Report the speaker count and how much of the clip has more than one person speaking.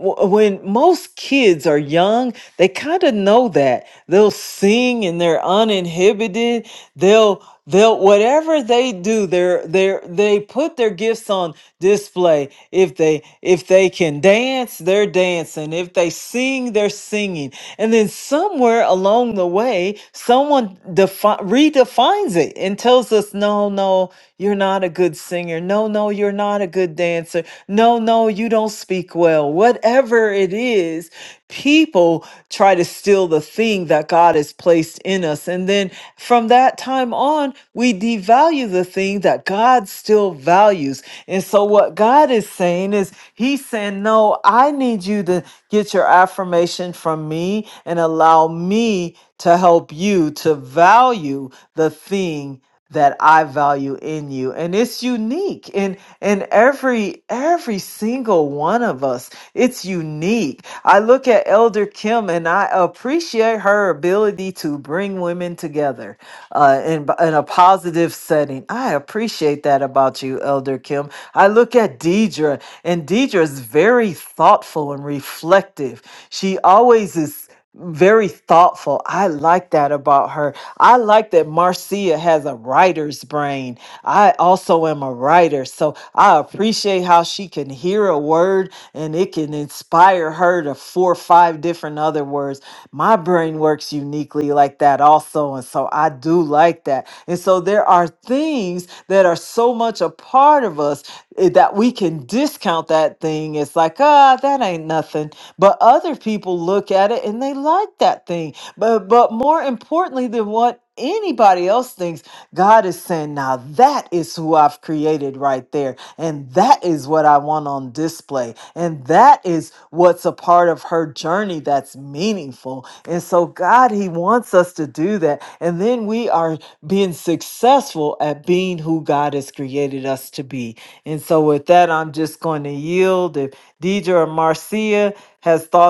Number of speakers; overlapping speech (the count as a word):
one, no overlap